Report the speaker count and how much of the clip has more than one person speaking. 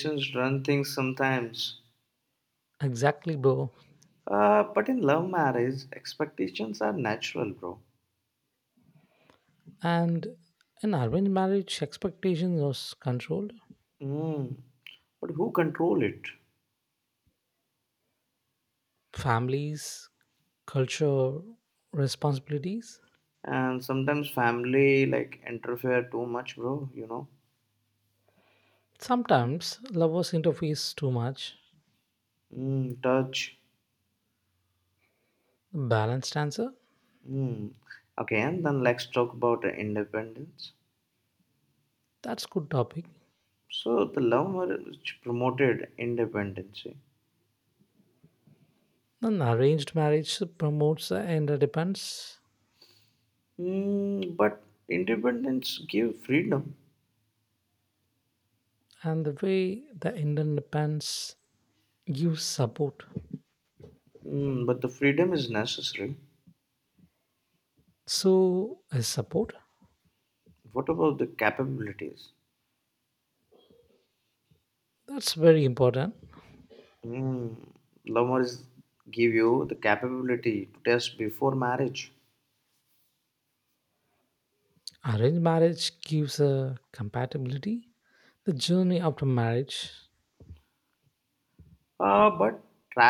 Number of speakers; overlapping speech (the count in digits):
2, no overlap